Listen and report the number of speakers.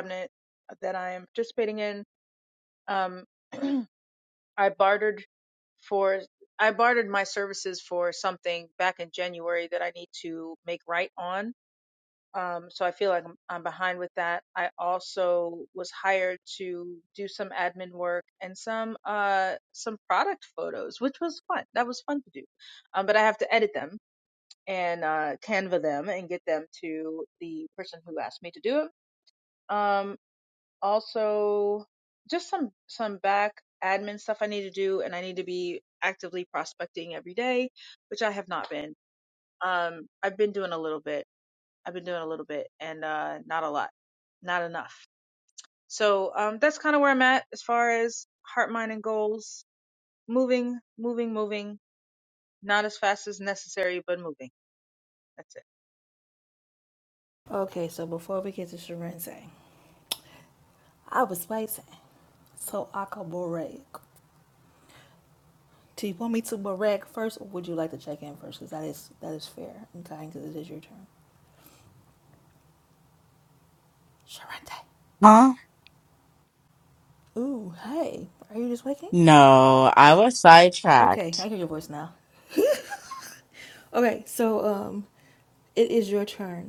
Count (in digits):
3